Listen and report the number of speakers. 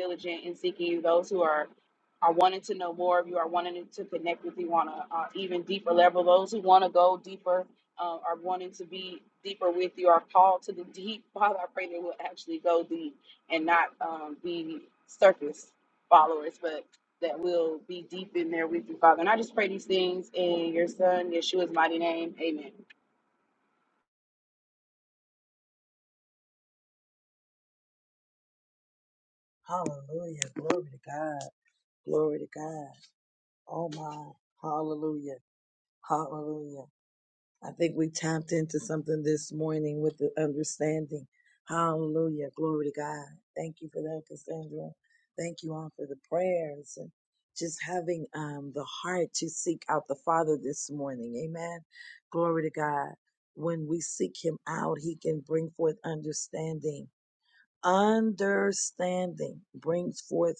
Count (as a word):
two